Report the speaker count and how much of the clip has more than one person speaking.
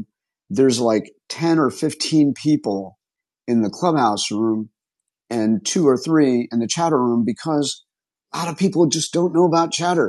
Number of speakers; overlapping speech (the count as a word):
one, no overlap